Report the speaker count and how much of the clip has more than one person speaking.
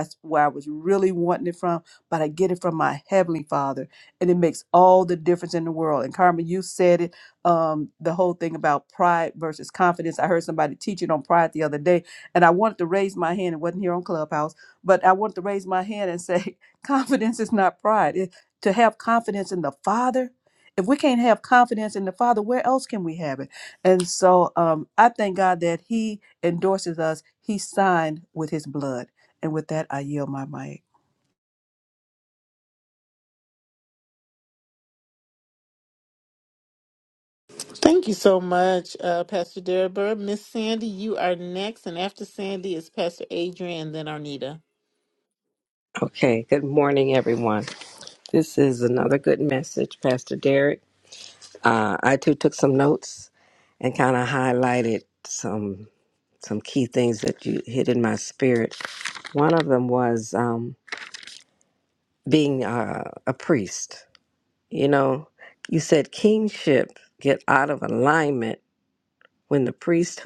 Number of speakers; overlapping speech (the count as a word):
three, no overlap